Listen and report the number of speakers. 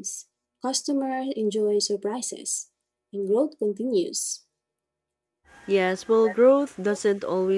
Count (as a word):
two